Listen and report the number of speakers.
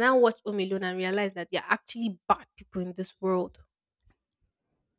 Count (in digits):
1